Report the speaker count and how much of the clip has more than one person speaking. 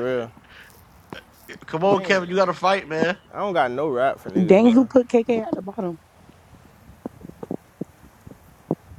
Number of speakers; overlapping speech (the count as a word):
three, about 7%